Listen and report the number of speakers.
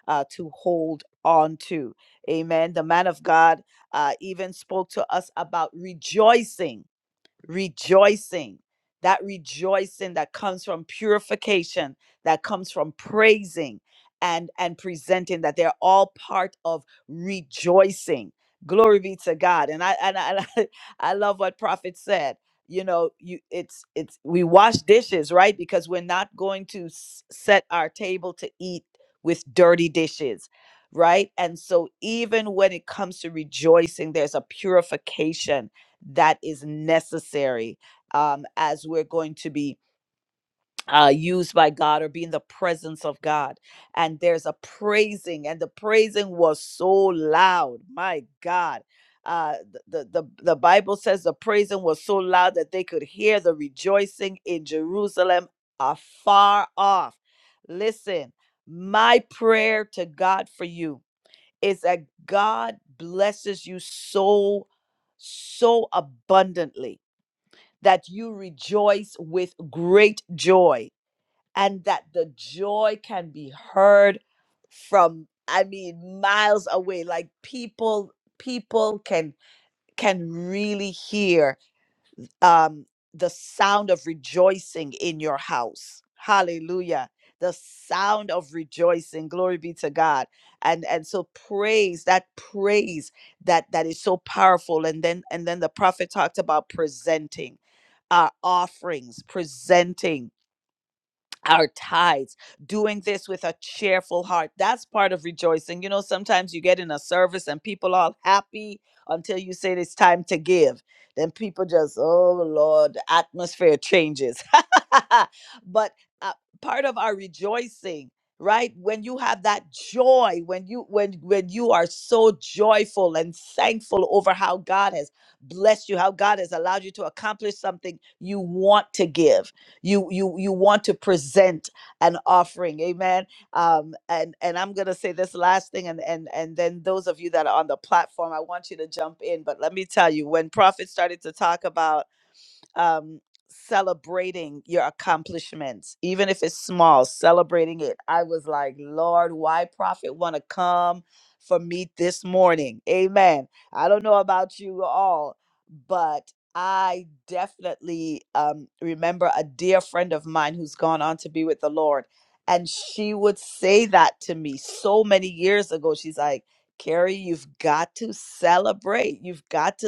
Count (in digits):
1